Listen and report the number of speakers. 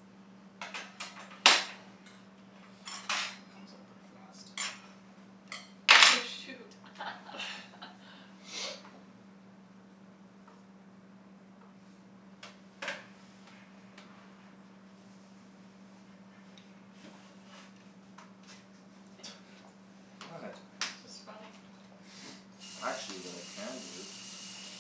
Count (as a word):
three